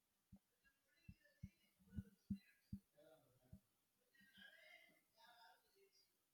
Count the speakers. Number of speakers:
zero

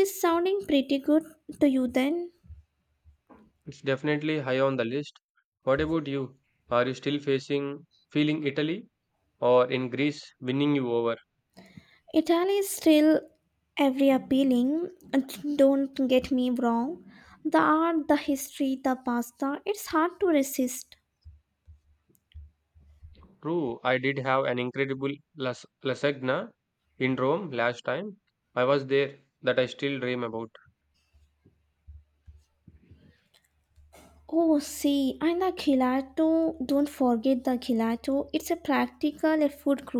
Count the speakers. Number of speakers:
two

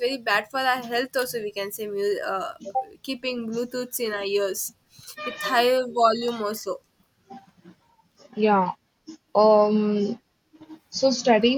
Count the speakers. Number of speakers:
two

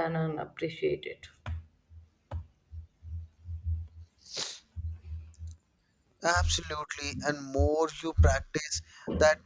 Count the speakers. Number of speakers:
two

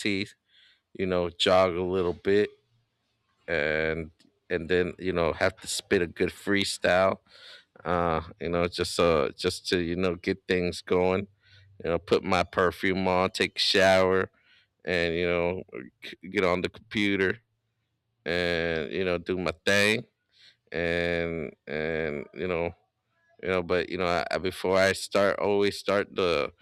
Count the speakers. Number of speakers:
one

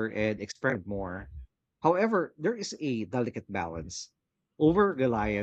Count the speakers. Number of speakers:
one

